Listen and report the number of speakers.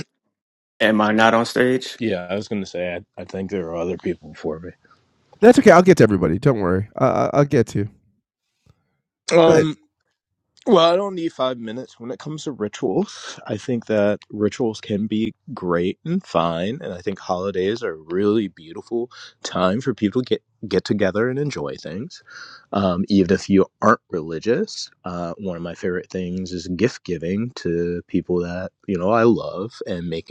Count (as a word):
three